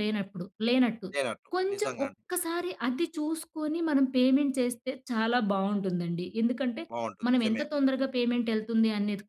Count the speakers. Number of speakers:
2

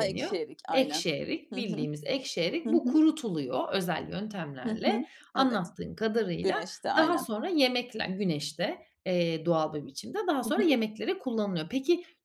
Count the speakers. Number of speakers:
2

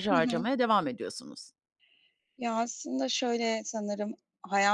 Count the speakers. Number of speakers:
2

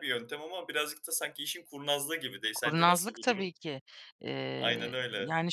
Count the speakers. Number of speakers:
2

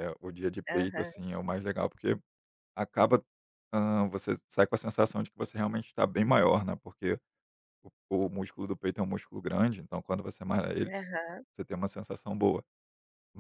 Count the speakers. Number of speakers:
2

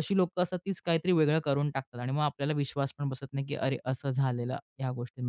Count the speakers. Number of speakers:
1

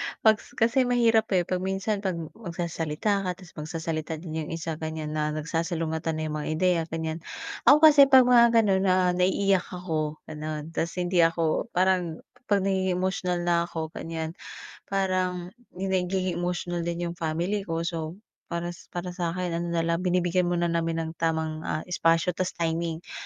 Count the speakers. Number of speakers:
1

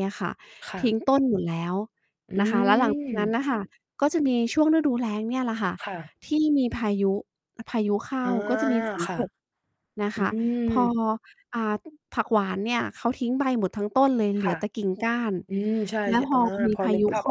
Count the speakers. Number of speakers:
2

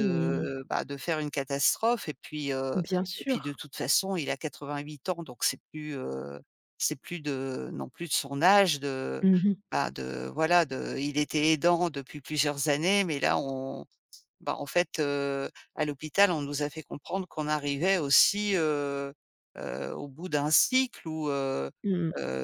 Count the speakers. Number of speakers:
2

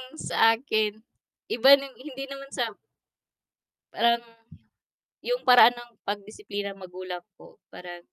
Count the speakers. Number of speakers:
1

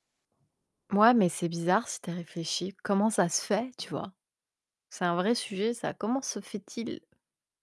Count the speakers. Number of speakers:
1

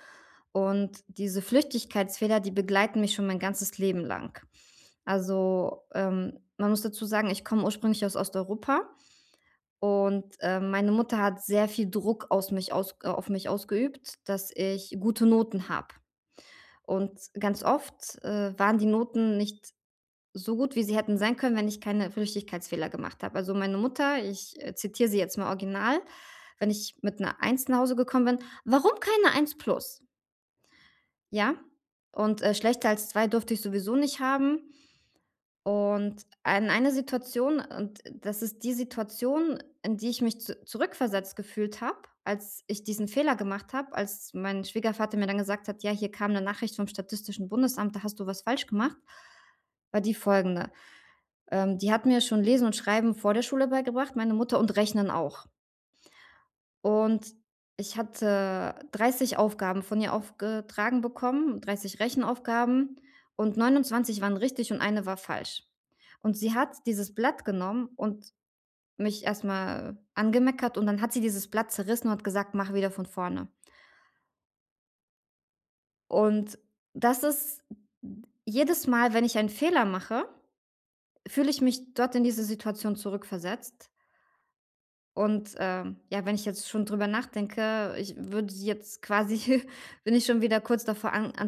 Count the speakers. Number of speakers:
1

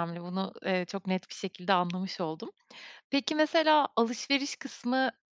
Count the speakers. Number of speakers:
1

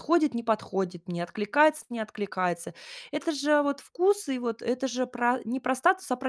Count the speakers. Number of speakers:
1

